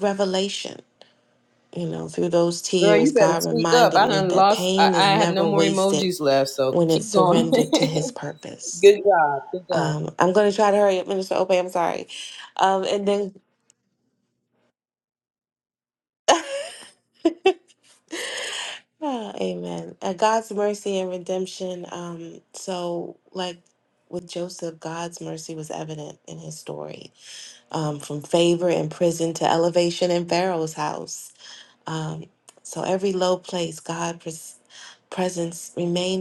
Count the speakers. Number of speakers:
2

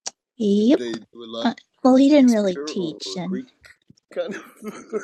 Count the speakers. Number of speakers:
2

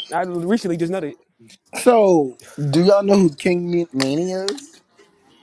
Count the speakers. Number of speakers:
2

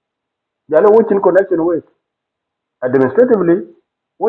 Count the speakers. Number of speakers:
1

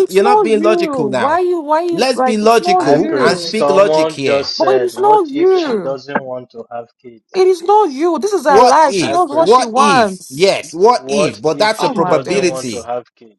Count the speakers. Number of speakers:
3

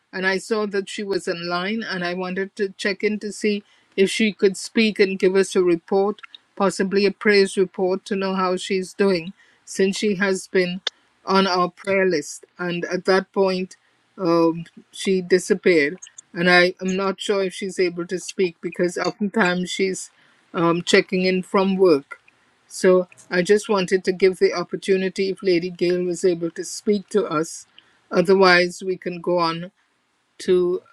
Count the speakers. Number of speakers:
1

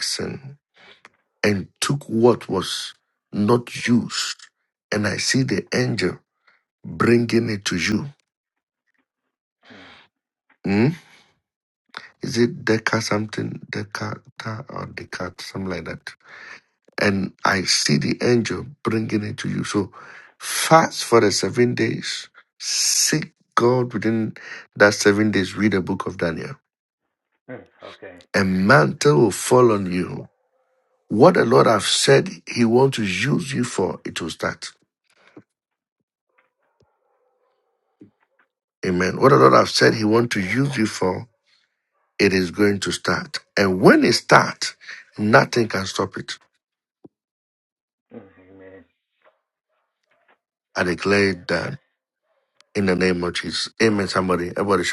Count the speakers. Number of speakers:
2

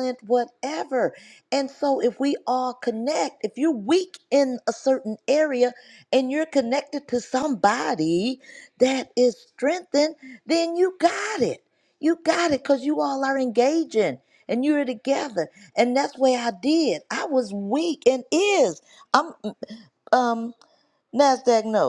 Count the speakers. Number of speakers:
1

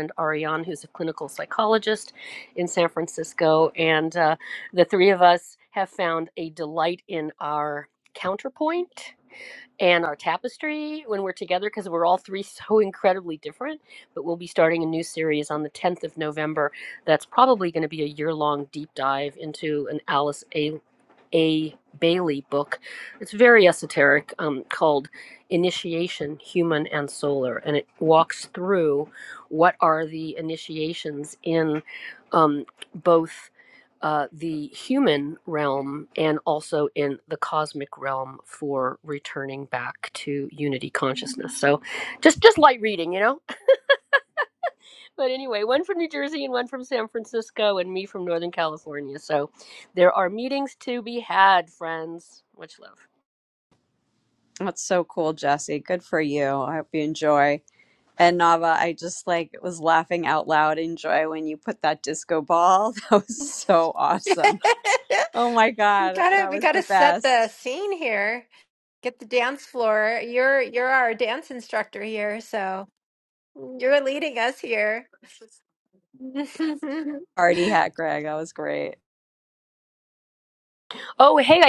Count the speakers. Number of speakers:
3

